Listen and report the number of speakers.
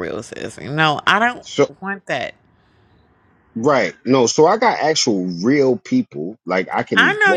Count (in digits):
2